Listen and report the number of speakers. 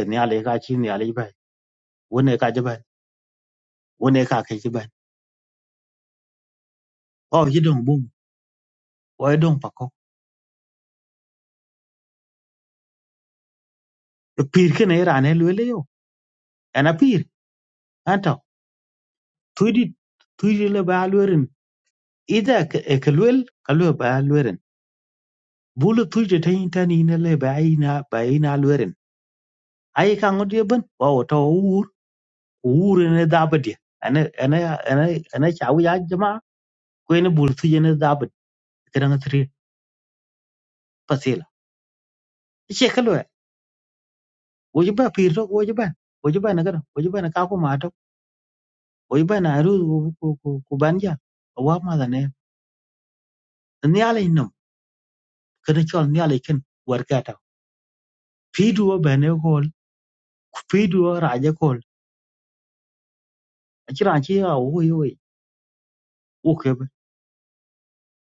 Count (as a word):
one